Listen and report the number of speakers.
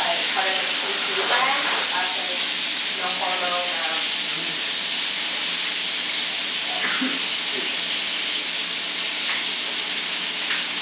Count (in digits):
1